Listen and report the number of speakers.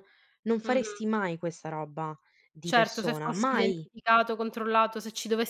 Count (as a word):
two